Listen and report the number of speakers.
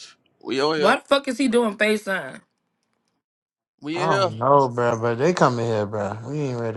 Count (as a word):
three